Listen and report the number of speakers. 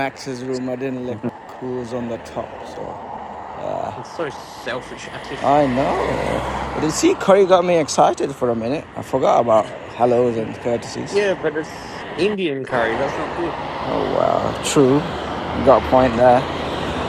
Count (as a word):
two